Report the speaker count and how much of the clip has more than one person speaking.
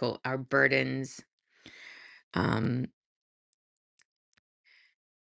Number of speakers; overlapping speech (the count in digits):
1, no overlap